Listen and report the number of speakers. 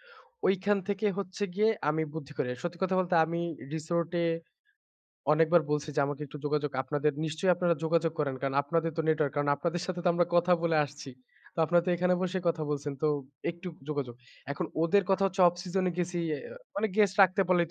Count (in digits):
1